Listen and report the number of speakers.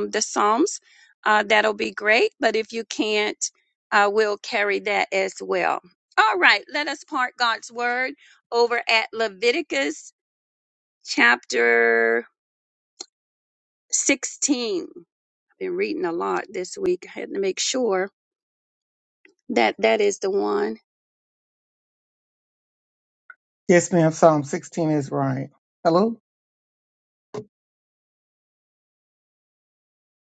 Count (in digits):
2